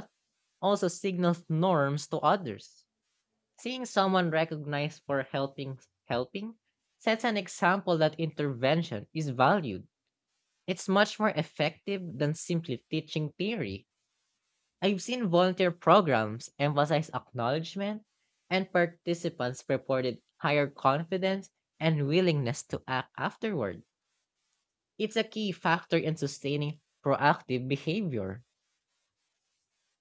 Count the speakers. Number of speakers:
1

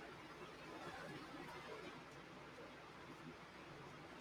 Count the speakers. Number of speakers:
0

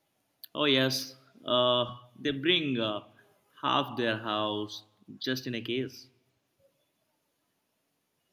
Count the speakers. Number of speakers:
1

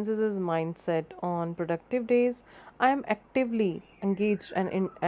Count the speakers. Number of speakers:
1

